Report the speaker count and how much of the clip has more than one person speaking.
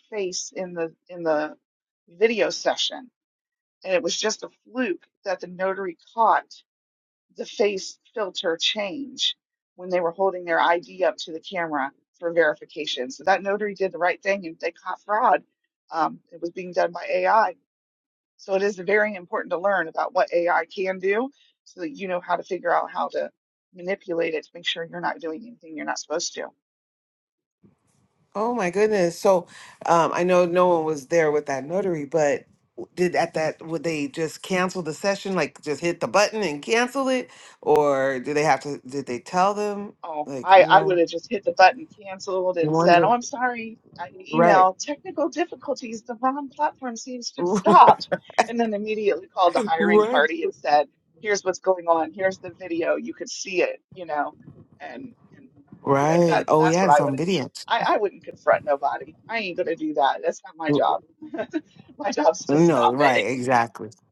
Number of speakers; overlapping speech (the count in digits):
2, about 6%